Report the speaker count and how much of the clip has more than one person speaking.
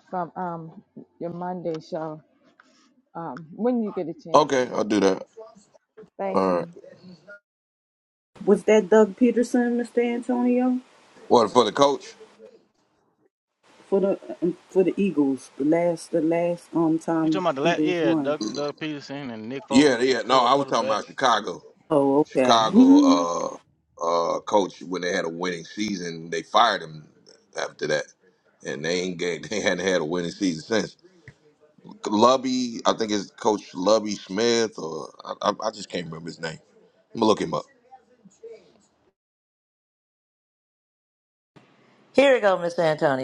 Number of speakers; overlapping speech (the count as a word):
five, about 9%